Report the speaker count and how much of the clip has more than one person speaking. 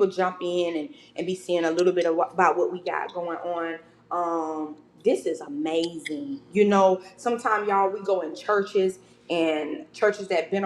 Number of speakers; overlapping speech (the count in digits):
1, no overlap